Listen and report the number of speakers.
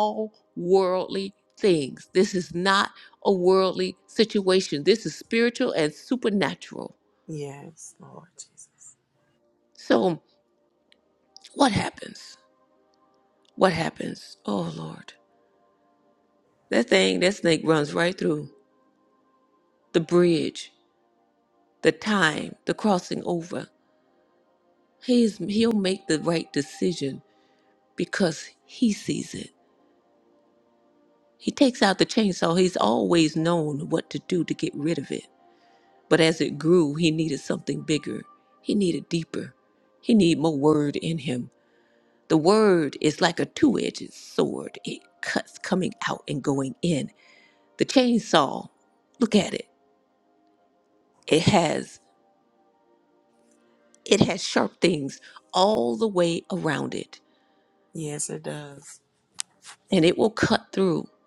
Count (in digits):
2